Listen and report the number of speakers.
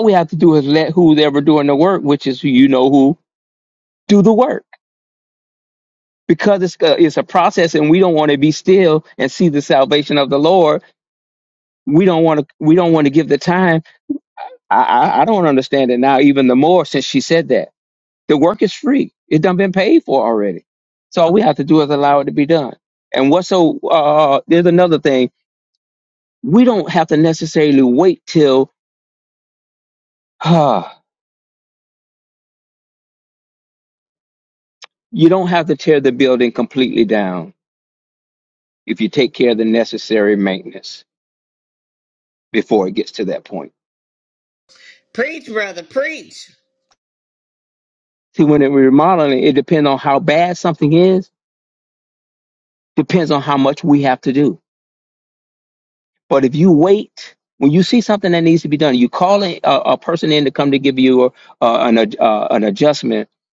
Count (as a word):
two